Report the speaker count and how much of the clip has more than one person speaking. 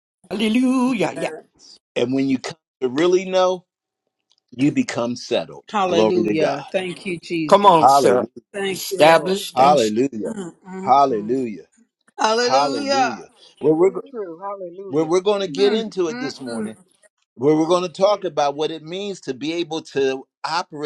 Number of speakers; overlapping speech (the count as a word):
four, about 31%